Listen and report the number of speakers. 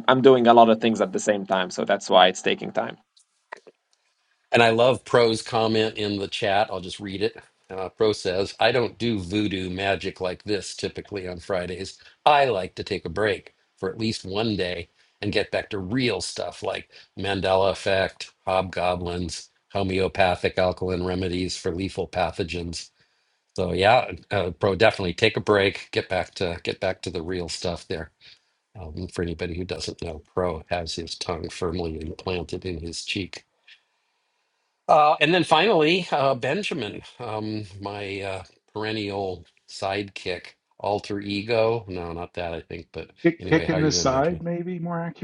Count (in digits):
3